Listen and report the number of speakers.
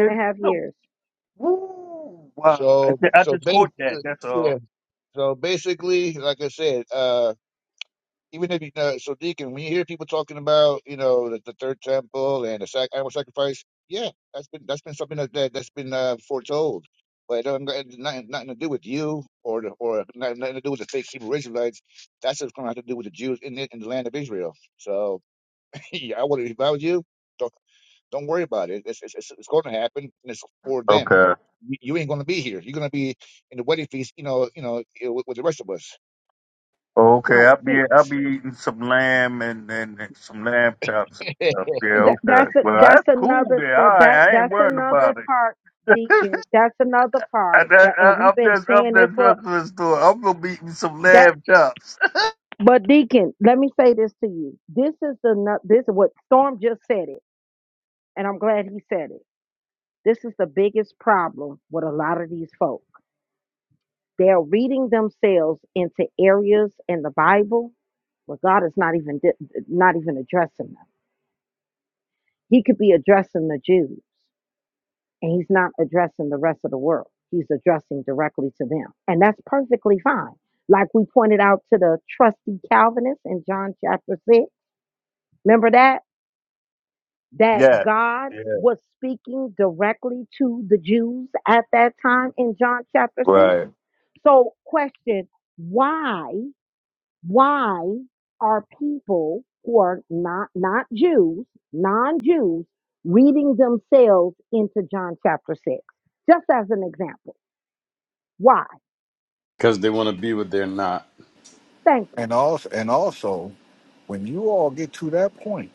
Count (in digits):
5